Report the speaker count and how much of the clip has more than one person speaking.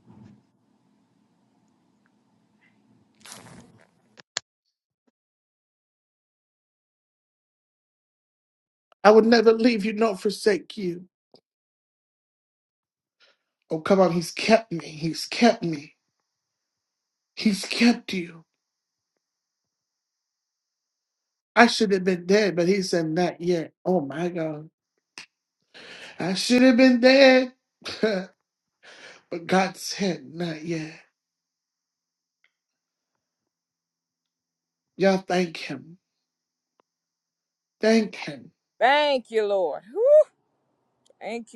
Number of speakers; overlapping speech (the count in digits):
2, no overlap